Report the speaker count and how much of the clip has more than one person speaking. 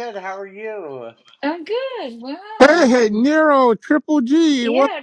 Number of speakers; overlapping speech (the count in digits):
3, about 14%